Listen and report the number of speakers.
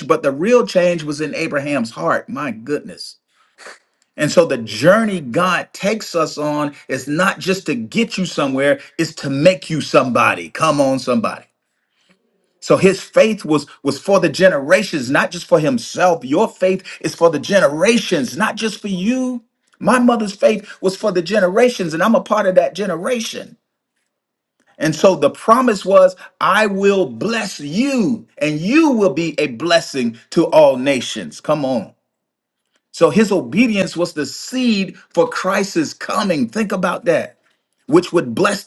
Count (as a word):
one